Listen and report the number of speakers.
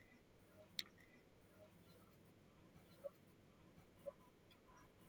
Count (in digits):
0